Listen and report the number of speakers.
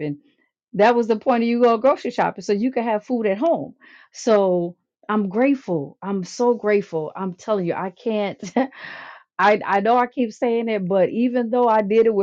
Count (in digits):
1